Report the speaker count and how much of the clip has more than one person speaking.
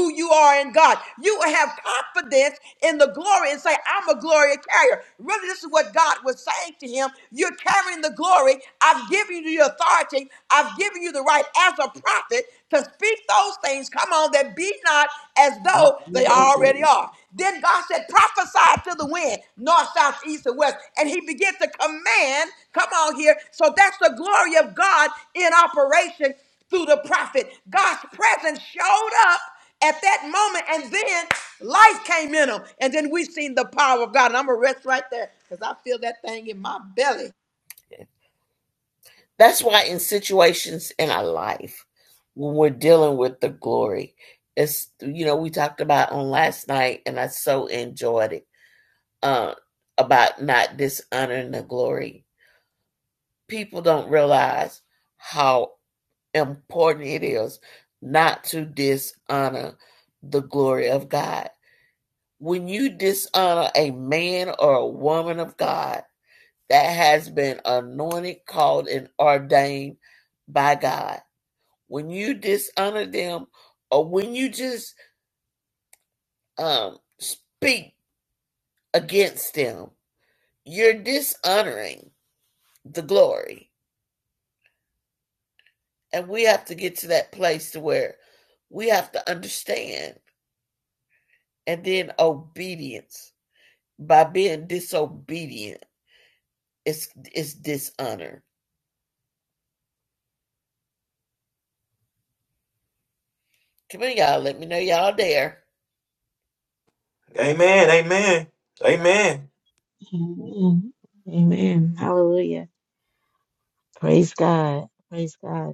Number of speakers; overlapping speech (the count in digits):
4, about 1%